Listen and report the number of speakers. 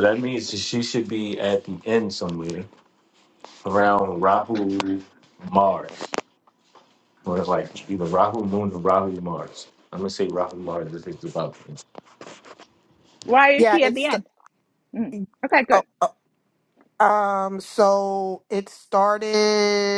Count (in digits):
3